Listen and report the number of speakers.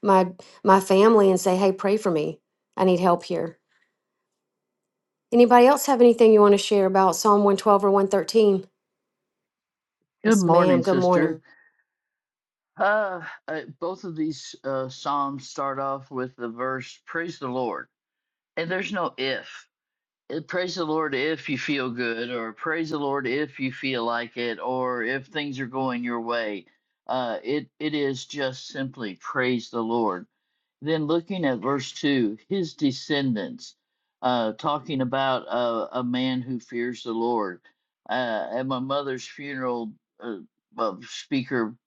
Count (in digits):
2